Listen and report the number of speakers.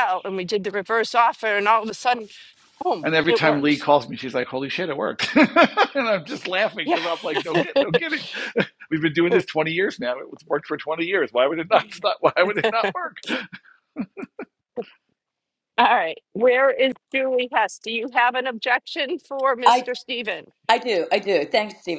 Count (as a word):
three